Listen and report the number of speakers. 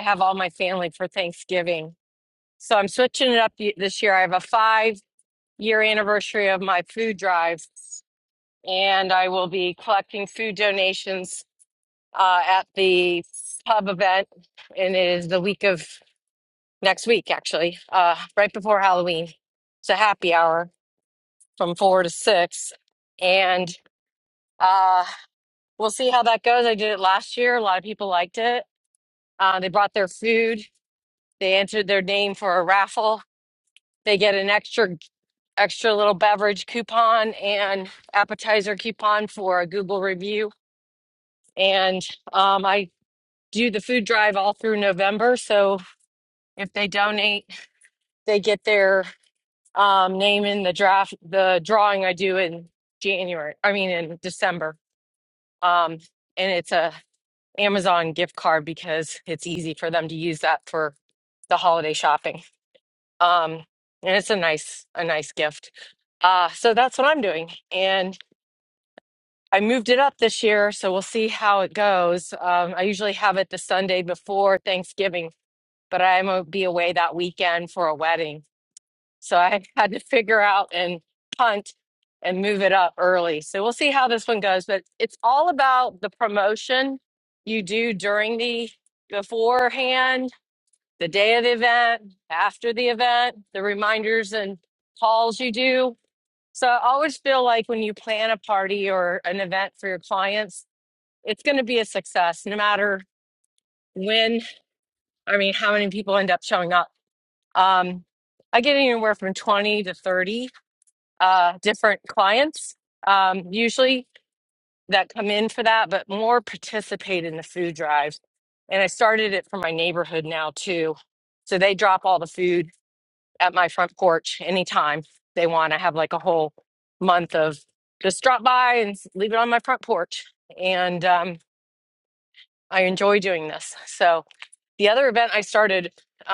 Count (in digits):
1